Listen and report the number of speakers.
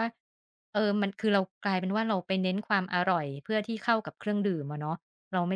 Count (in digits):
1